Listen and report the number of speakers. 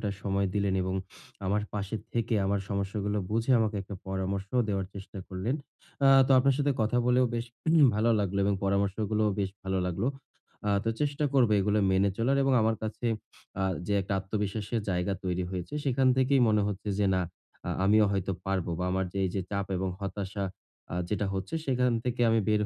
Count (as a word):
one